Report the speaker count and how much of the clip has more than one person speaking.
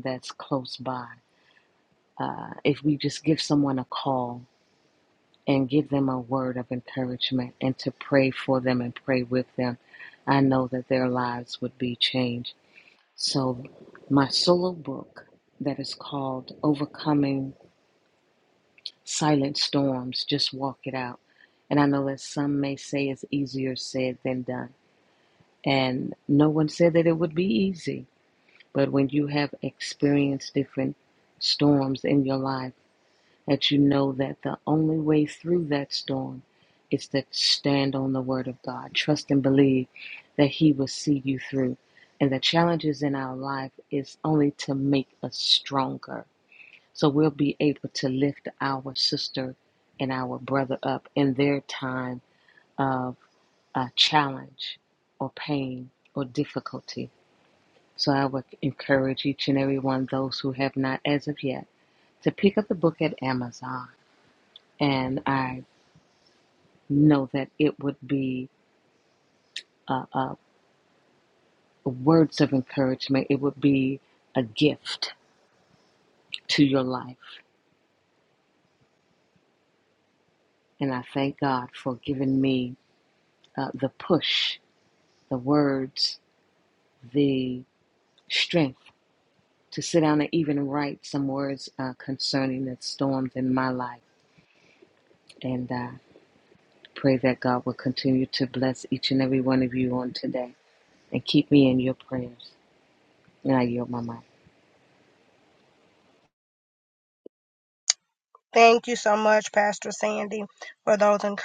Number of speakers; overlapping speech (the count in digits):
2, no overlap